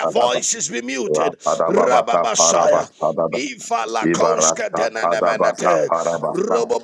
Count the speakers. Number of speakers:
two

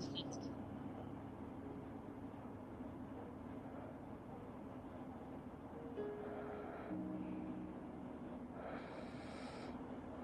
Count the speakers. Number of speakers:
zero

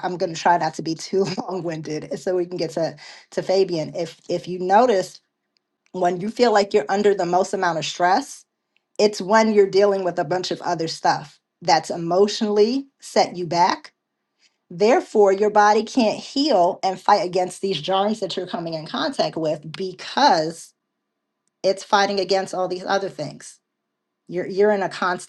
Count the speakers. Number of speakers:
one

